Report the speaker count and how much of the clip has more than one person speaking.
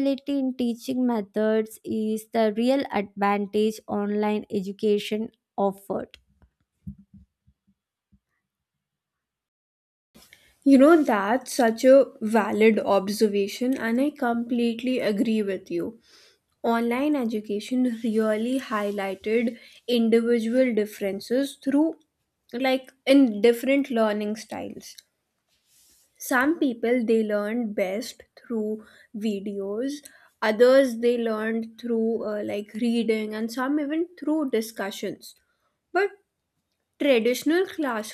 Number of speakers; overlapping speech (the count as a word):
two, no overlap